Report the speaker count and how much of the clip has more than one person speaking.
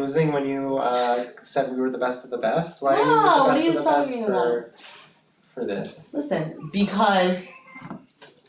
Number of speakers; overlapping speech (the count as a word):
two, about 20%